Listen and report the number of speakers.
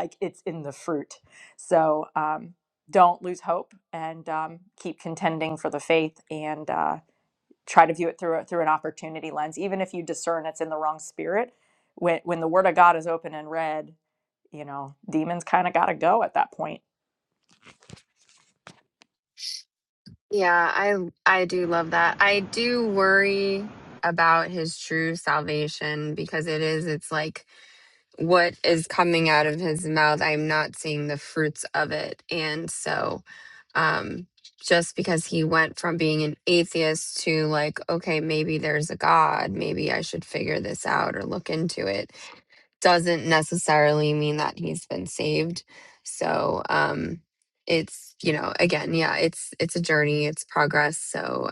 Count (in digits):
2